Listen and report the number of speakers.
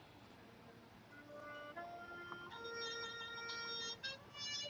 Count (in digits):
0